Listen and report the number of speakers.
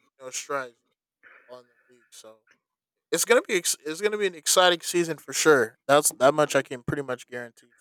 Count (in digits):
1